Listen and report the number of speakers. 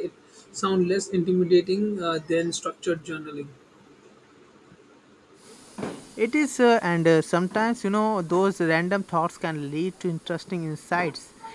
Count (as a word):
two